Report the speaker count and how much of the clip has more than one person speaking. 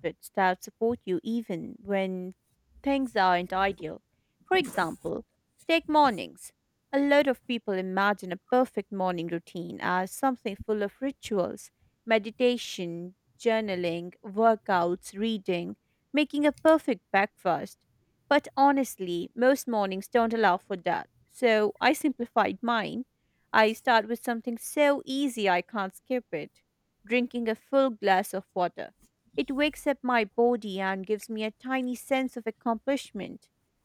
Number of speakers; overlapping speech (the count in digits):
1, no overlap